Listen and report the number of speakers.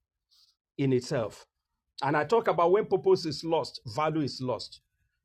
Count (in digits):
1